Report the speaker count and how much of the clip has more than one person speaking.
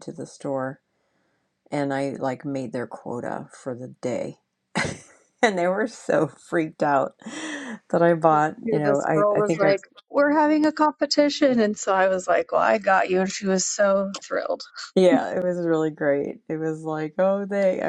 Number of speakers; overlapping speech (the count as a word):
two, about 6%